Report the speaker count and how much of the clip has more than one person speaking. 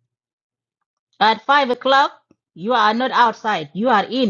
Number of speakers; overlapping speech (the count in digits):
1, no overlap